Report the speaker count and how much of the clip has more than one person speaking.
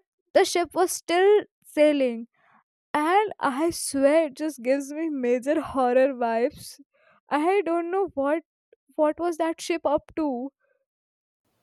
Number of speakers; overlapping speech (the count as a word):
one, no overlap